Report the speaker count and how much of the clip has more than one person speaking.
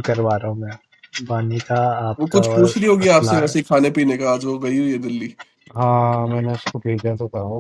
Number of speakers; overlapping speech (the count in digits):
3, about 16%